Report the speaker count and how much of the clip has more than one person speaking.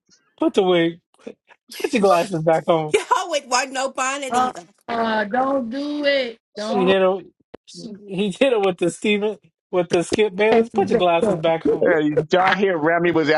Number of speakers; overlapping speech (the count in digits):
4, about 12%